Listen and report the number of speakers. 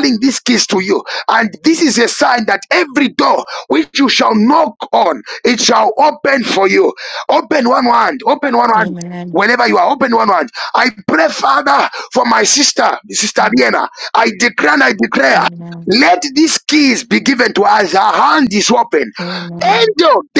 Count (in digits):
2